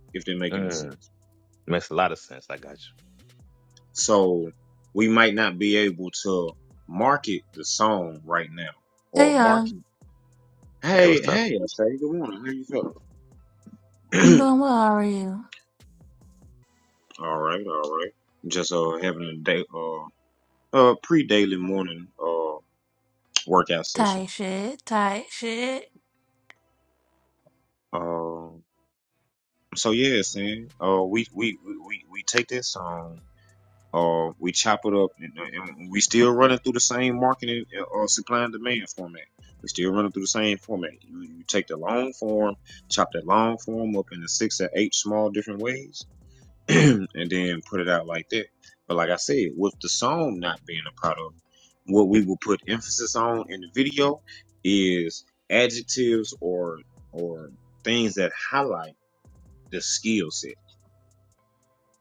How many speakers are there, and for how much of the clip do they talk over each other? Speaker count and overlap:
3, about 3%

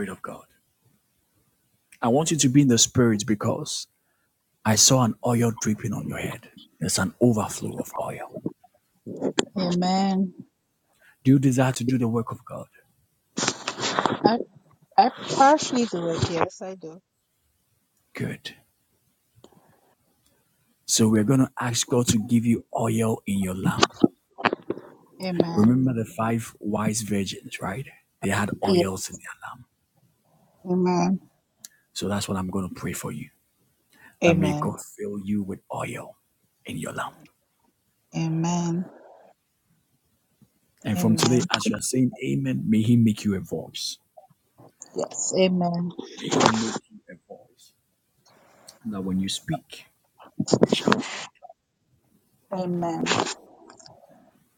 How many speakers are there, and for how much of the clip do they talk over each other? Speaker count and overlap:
2, about 3%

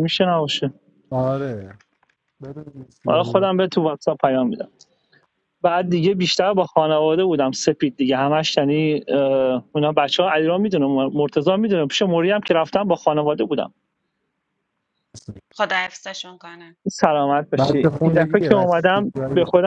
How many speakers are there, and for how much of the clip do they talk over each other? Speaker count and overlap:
3, about 12%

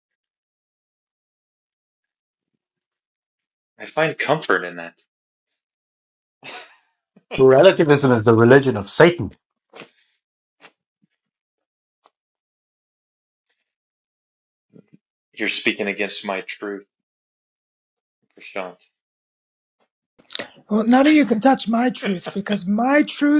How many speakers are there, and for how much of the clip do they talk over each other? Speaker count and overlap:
3, no overlap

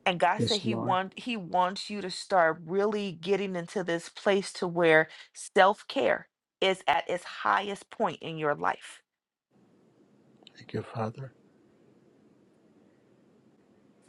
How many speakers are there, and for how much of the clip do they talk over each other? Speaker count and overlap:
2, about 4%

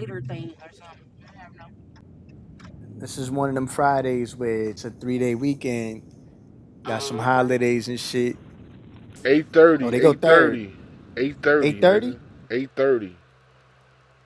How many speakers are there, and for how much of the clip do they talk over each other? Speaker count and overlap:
3, about 13%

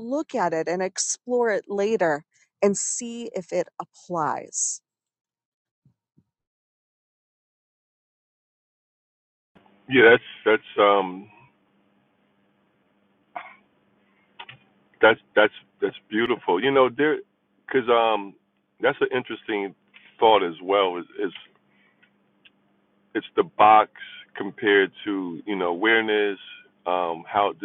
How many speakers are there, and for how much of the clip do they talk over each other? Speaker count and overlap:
2, no overlap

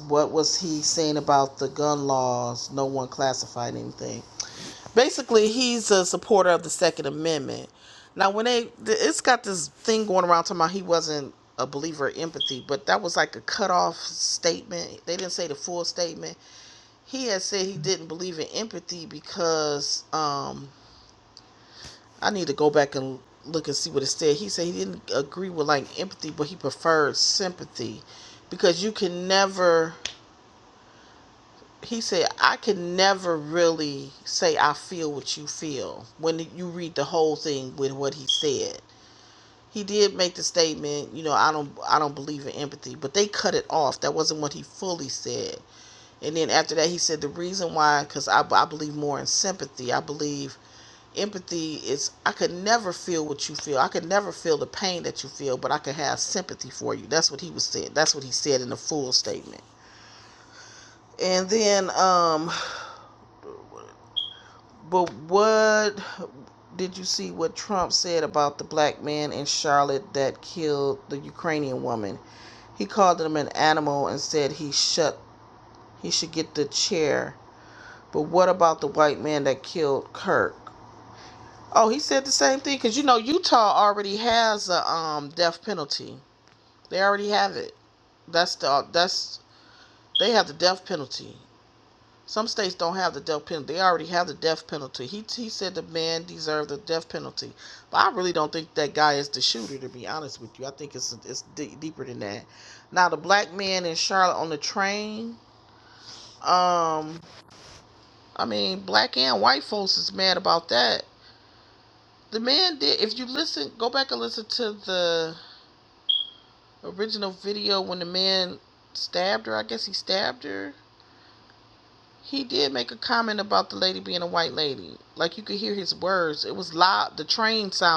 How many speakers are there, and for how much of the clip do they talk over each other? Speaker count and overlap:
1, no overlap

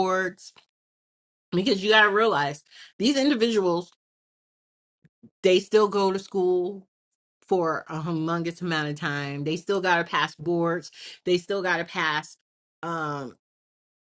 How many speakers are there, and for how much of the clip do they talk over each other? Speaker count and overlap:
1, no overlap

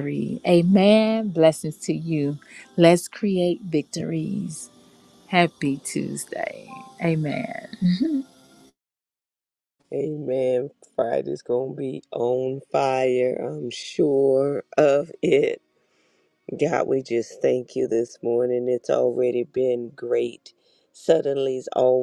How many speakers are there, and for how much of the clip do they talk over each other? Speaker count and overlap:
2, no overlap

